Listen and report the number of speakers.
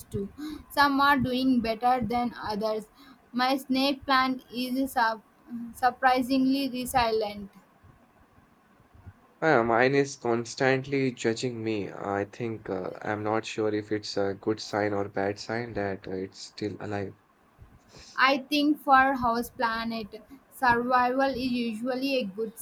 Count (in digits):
2